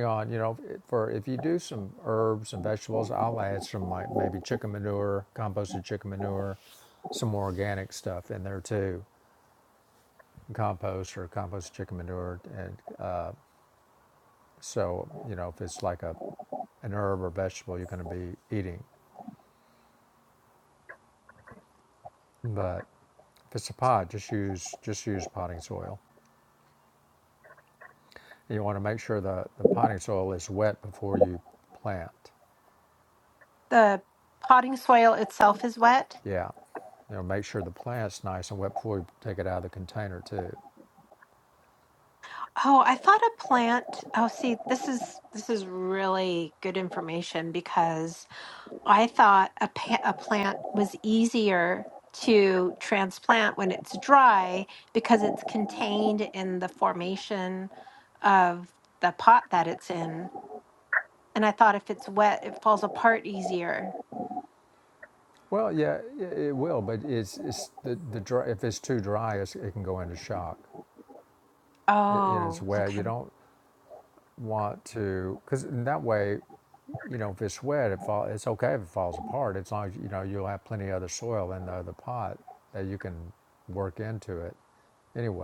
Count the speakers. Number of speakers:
2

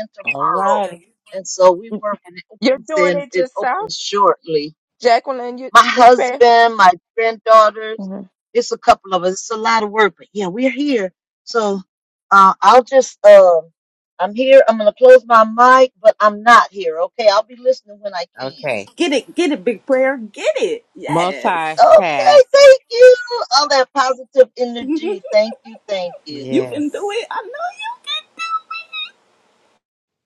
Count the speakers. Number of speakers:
4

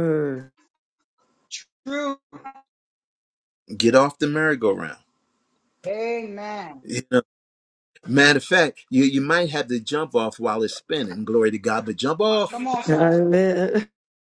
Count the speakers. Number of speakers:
3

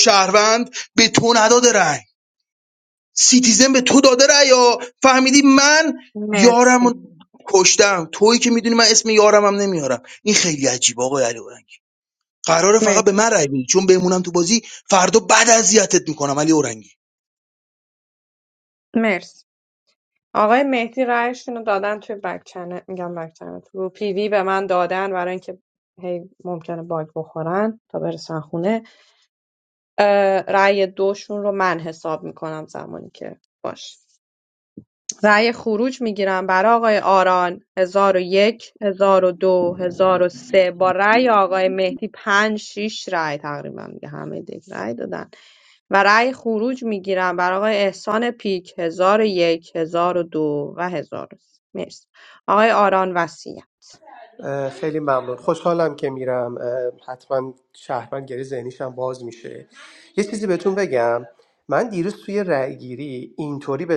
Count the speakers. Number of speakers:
3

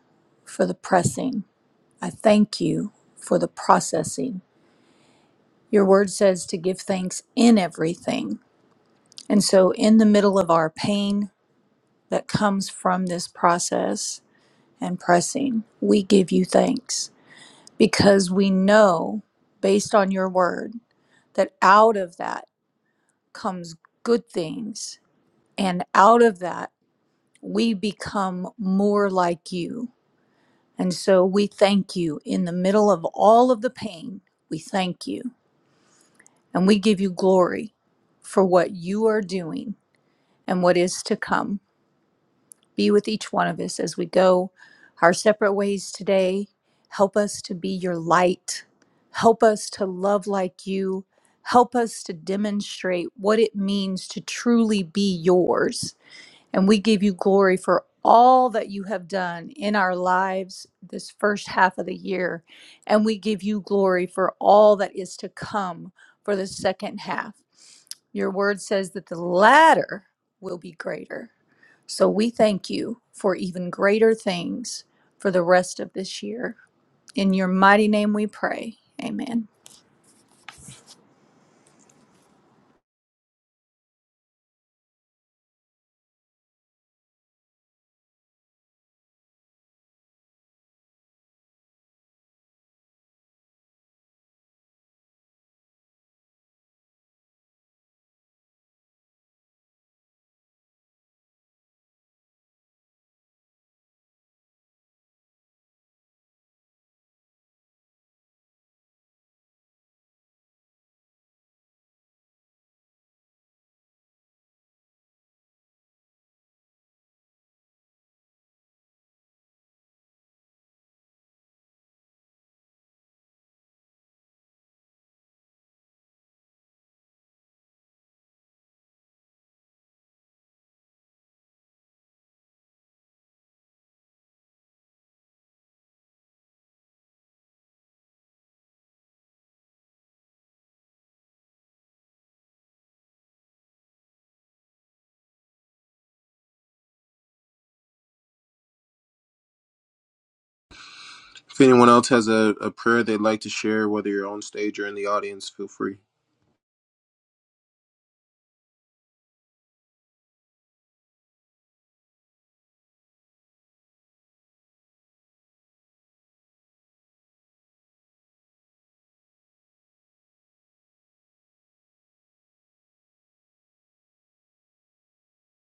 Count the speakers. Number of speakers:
2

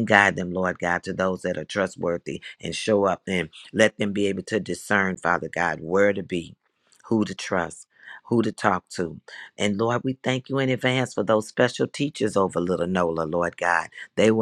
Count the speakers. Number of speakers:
1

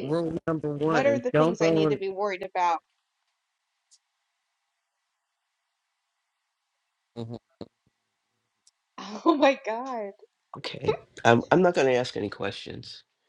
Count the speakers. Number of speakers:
3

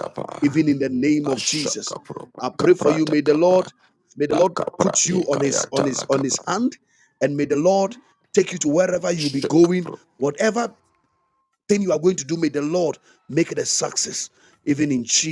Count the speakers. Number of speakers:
2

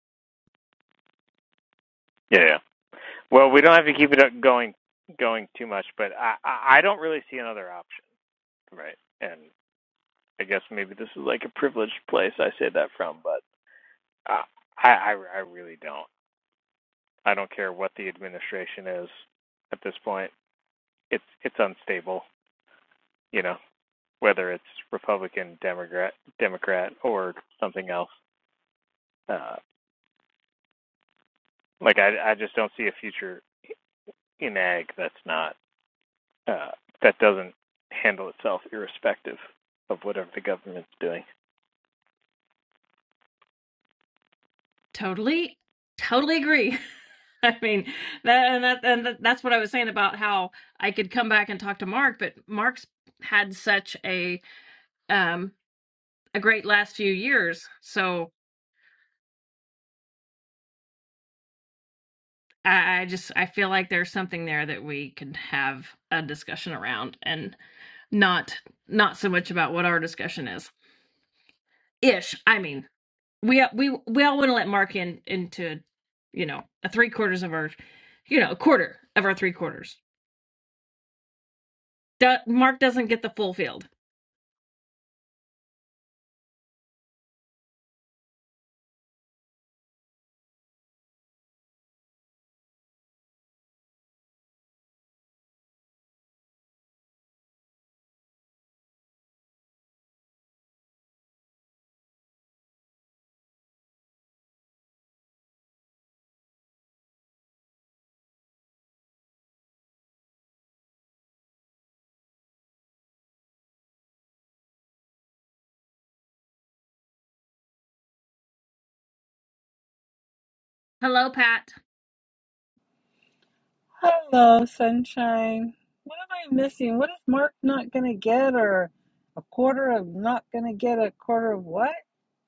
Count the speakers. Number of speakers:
3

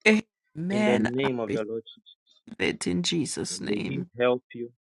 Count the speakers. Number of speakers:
2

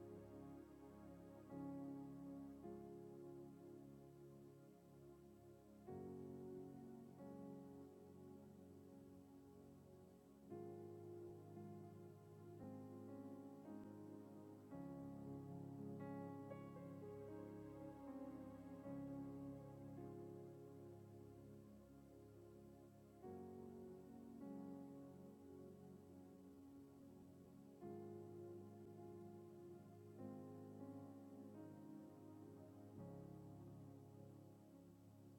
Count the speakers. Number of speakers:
0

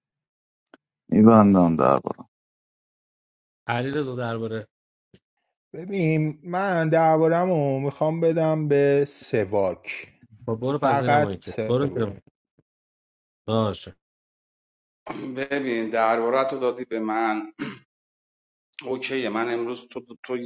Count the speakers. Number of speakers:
4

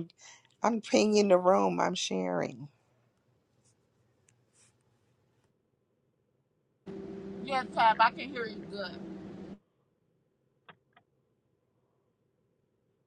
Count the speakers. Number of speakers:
2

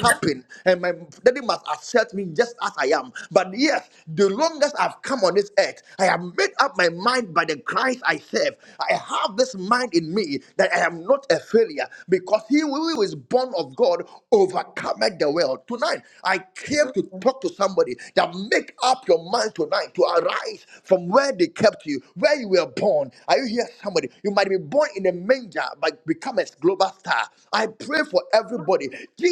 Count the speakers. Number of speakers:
1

